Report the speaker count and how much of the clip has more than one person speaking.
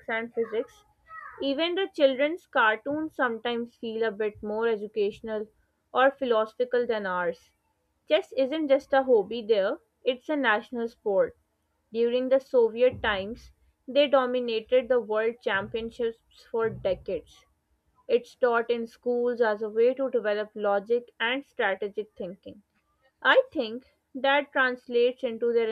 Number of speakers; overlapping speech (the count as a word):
one, no overlap